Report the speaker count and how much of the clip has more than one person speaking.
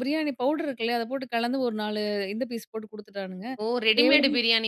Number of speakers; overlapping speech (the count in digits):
2, about 9%